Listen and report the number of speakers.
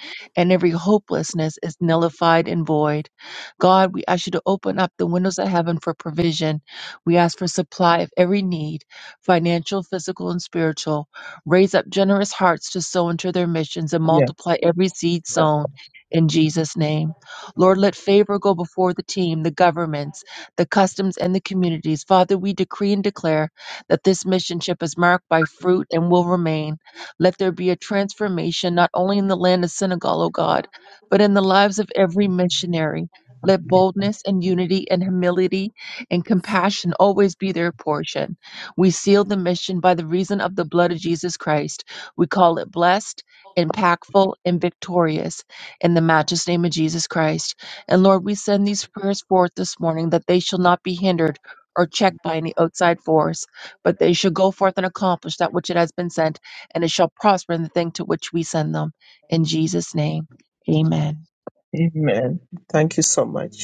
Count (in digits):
2